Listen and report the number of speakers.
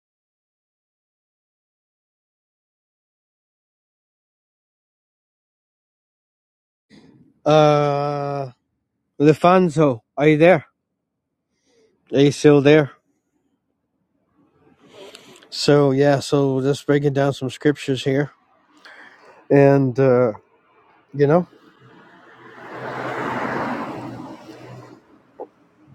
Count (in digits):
1